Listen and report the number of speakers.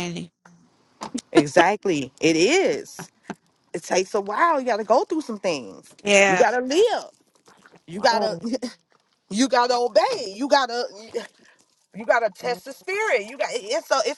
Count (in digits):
2